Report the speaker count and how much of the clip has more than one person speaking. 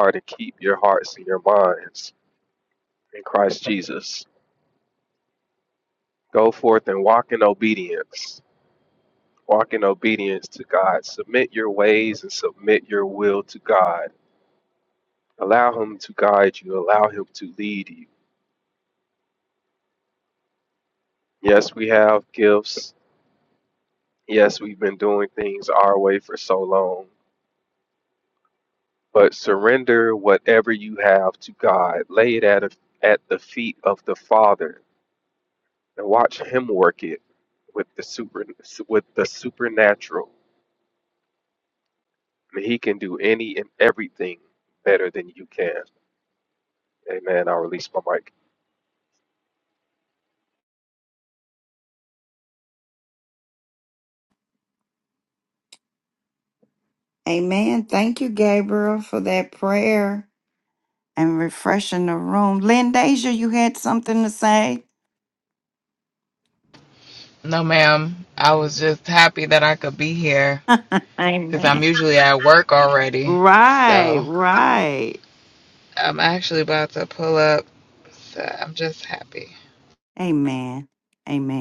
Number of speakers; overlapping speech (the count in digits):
3, about 1%